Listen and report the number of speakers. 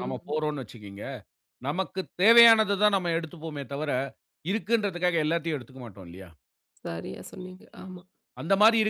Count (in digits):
2